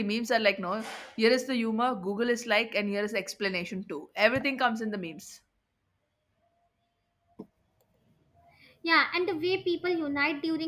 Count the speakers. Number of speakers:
two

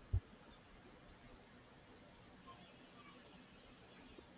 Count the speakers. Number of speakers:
zero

